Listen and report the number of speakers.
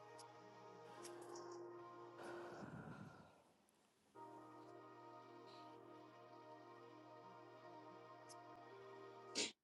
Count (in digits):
0